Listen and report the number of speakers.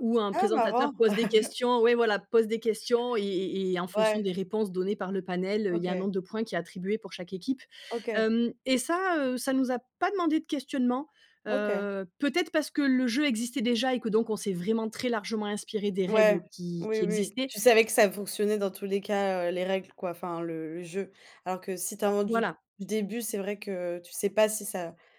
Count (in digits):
2